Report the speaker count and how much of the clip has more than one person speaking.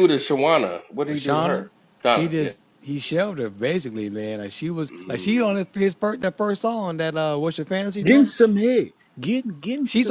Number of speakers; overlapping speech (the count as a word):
three, about 21%